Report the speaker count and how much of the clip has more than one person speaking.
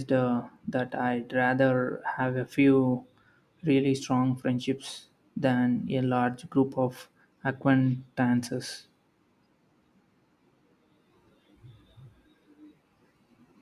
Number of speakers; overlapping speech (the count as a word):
one, no overlap